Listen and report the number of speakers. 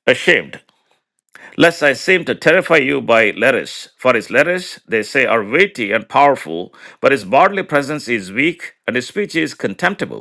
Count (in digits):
1